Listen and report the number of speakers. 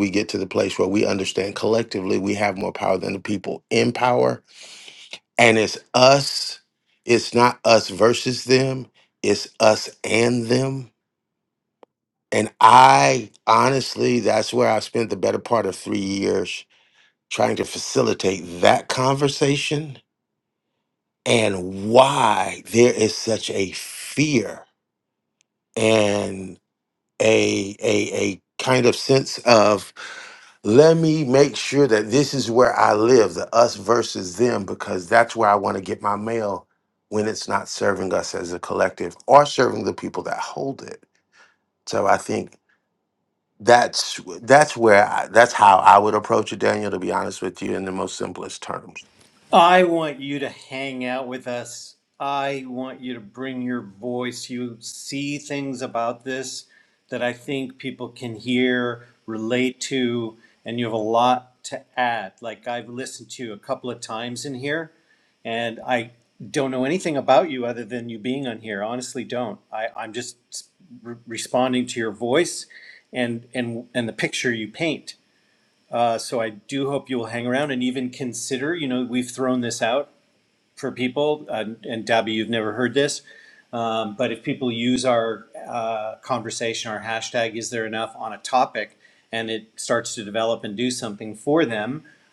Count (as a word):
two